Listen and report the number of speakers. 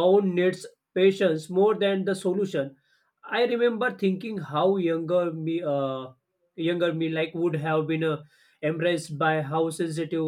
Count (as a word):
one